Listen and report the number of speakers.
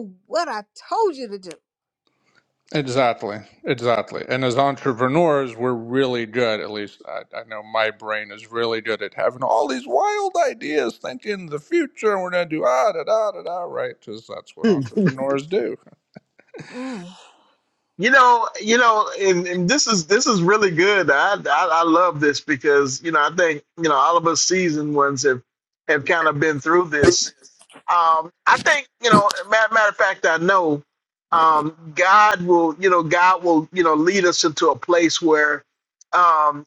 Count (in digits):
3